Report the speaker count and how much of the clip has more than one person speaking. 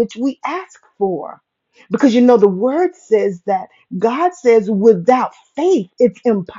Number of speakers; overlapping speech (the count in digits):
1, no overlap